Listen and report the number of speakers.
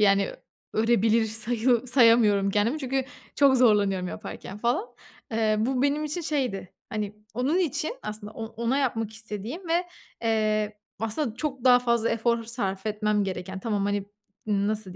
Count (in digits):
1